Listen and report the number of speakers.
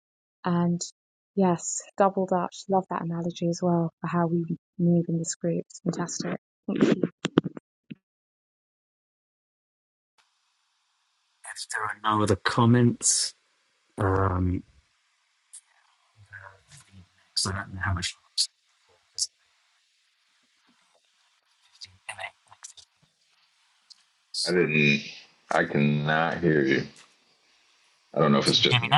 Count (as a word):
three